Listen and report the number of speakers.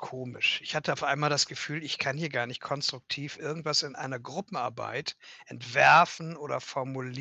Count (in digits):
1